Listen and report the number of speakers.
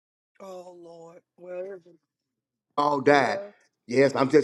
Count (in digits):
2